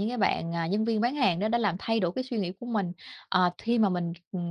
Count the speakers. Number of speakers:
1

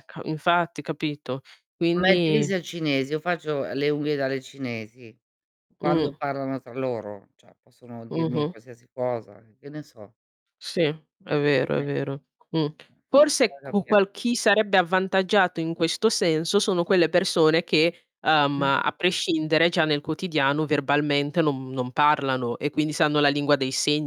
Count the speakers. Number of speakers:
2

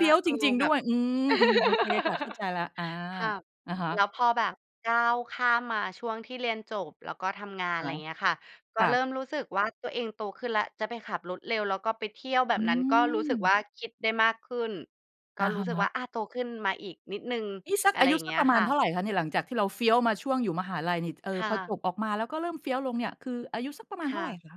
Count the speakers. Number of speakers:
2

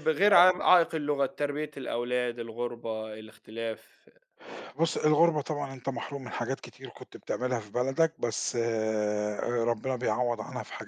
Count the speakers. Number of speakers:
2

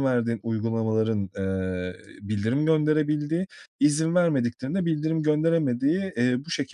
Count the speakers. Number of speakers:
1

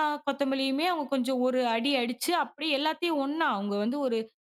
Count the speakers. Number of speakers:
1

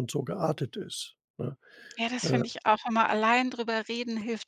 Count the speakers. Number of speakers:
2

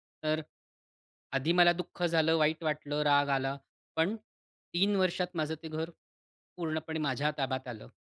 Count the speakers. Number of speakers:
1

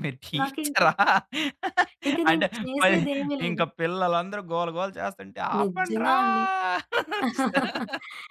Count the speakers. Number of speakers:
2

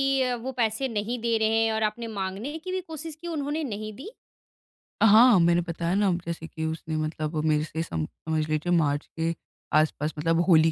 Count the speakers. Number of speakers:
2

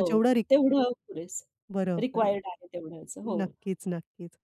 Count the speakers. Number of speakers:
2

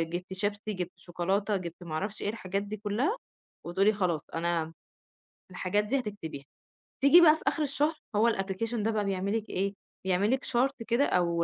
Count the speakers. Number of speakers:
1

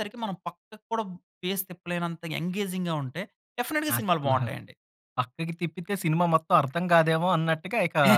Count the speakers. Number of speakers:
2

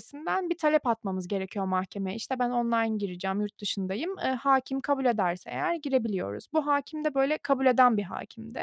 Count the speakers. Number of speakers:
1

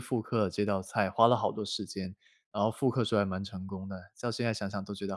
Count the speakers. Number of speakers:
1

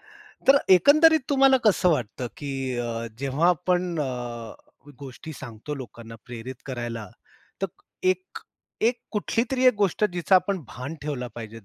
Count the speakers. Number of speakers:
1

